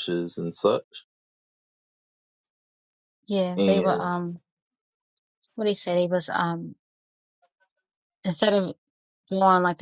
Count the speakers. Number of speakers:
2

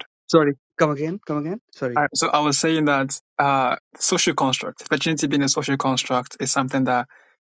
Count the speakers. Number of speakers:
2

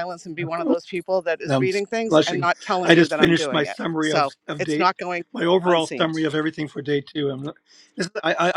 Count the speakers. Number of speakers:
2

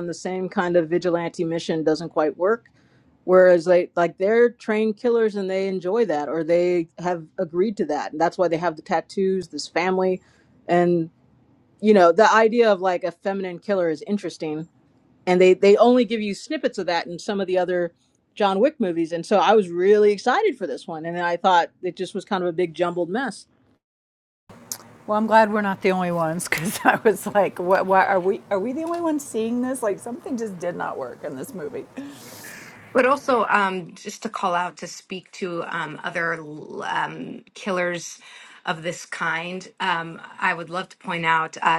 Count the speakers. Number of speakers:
3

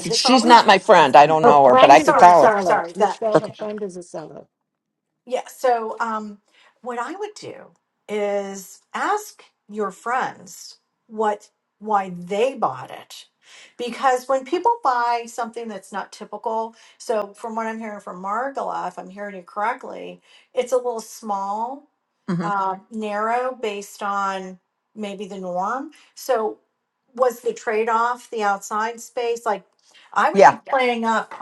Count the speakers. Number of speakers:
3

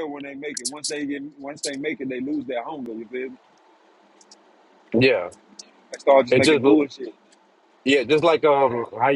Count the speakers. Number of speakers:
2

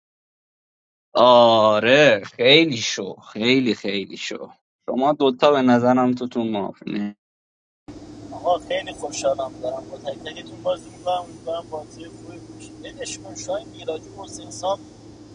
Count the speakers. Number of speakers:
2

